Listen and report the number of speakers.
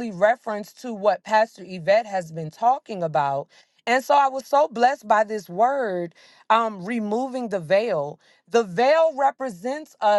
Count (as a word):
one